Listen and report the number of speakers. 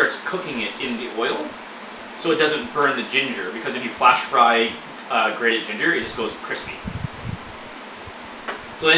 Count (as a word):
one